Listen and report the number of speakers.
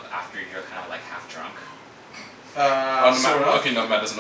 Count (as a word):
three